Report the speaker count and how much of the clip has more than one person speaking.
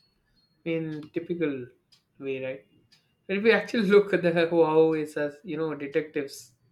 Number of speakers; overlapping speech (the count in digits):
1, no overlap